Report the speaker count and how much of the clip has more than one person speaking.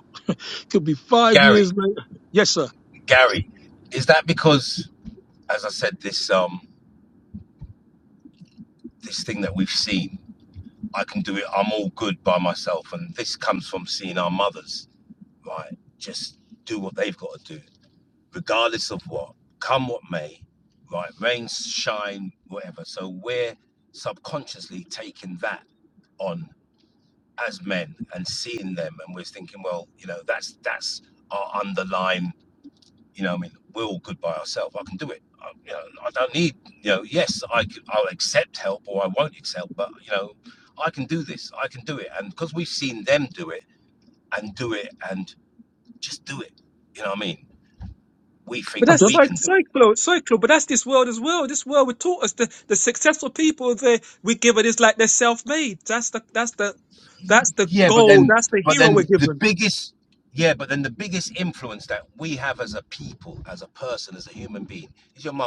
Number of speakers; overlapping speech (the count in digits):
3, about 4%